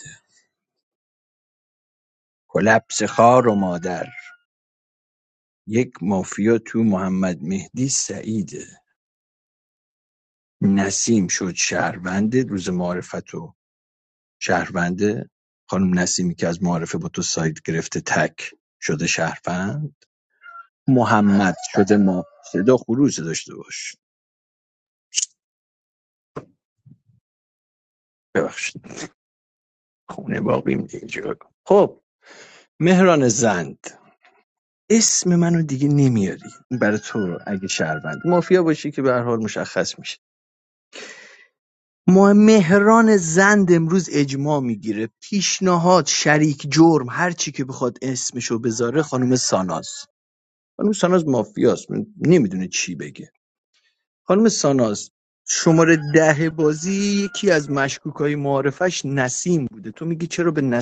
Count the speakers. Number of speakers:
one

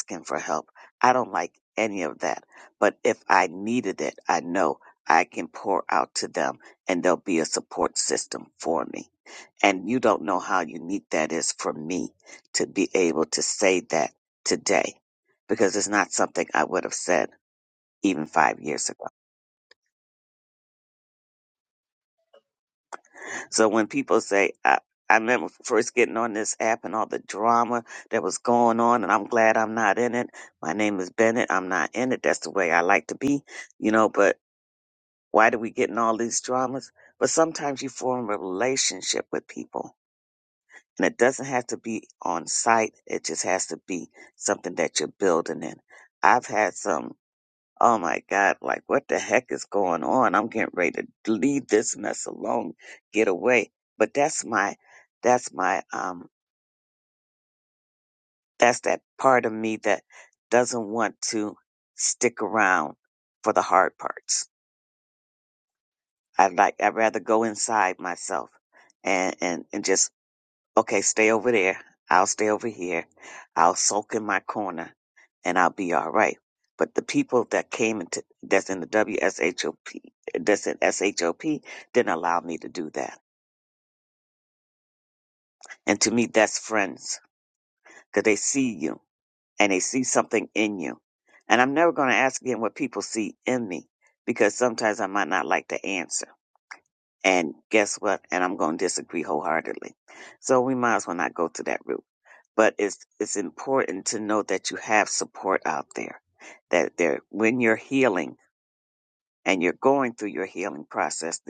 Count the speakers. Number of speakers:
one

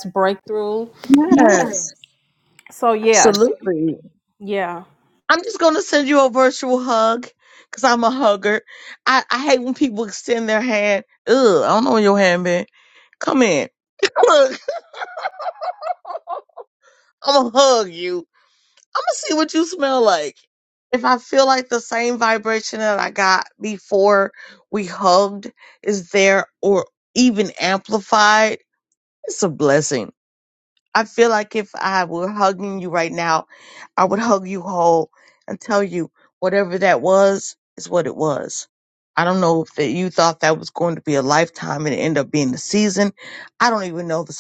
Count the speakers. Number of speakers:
two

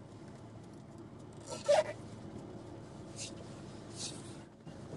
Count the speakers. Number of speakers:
zero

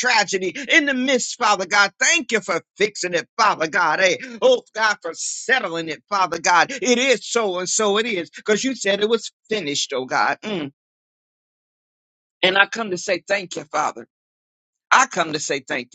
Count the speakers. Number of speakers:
one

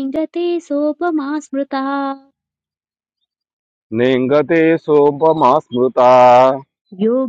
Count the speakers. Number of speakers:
two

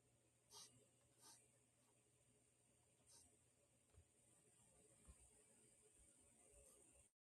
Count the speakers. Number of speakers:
zero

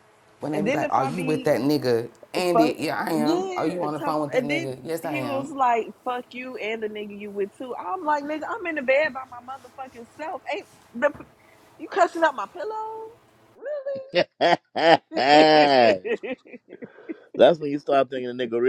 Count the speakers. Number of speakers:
three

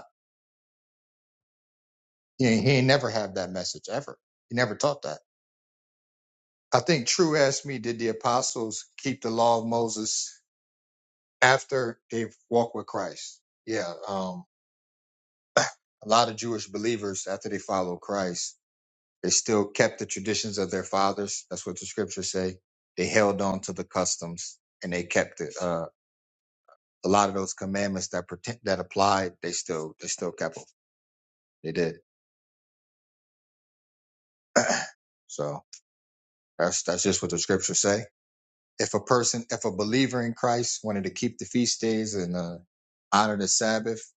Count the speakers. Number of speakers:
one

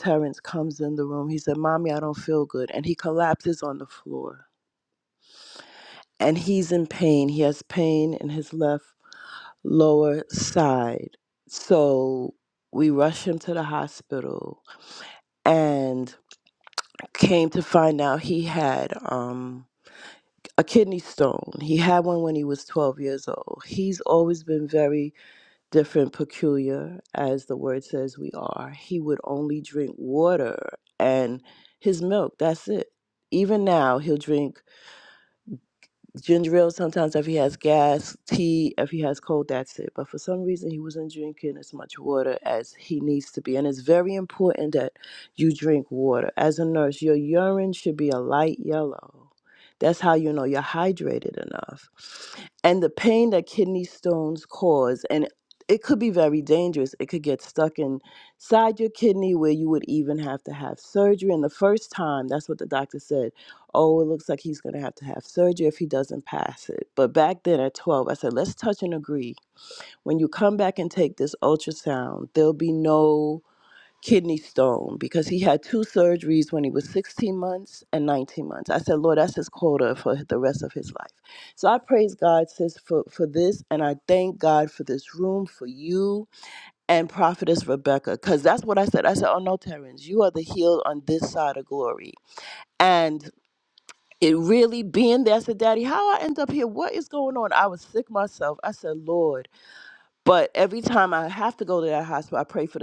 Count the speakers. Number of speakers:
one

